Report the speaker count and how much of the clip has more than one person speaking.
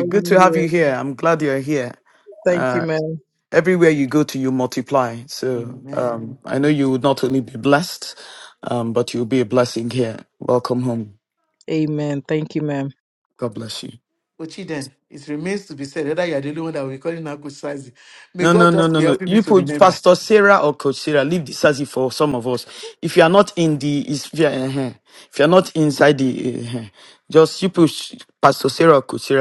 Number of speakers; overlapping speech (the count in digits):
3, about 12%